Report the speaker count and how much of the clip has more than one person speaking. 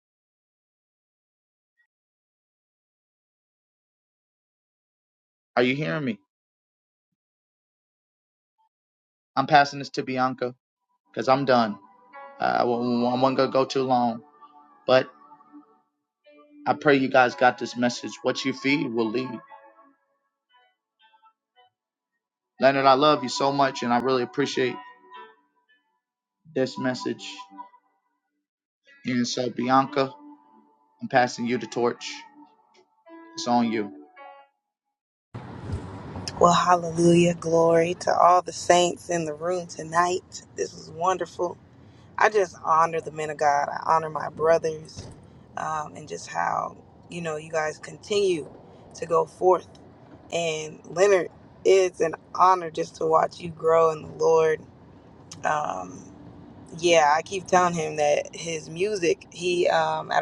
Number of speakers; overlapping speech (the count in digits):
2, no overlap